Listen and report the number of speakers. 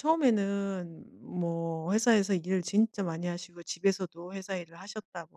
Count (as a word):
one